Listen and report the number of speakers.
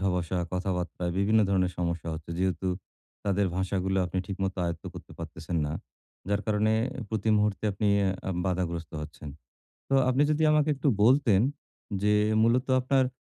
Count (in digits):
1